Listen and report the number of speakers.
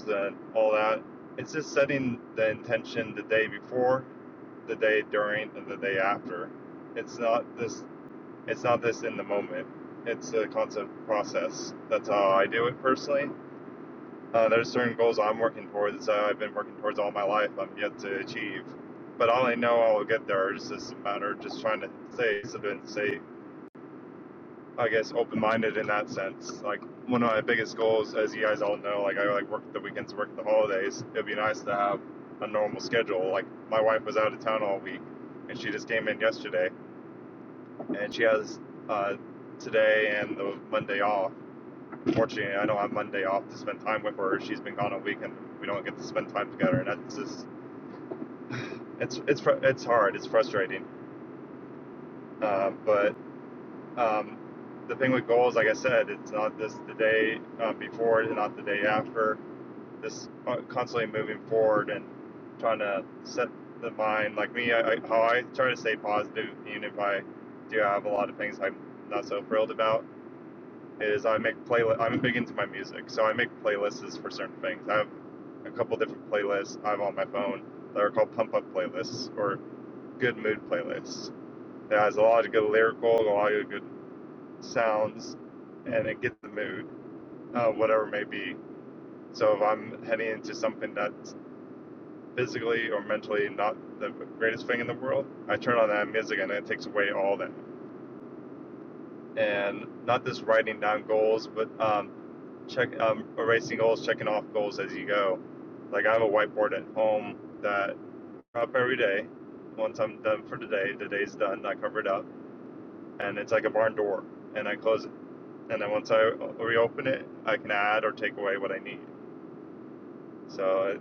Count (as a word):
one